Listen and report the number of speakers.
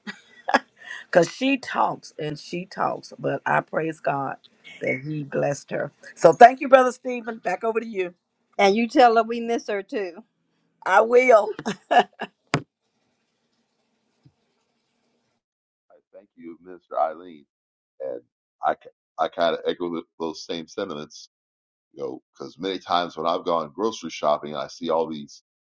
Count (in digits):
3